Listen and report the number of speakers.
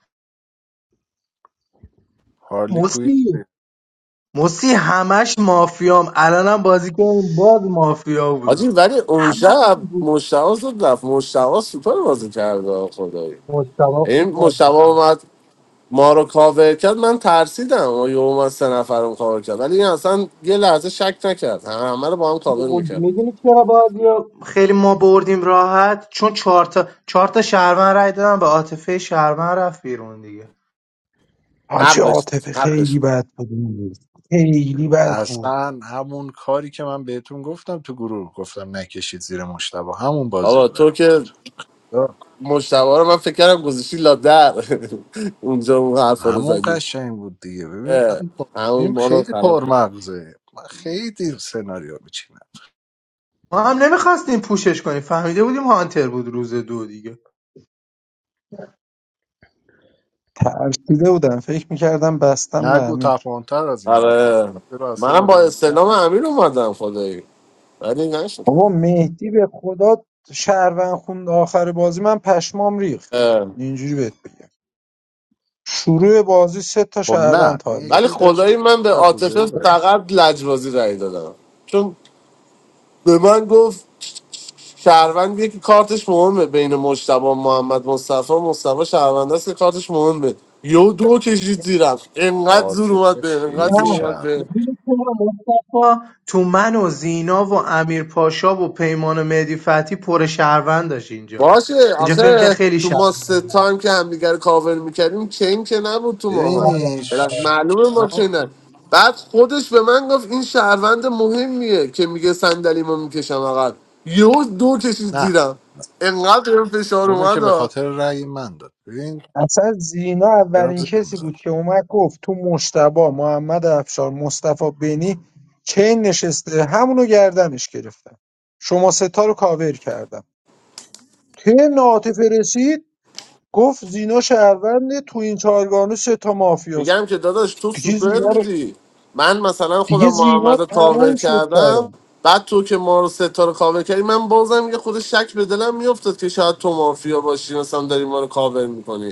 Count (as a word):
four